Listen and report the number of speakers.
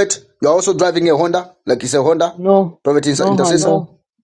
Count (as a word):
two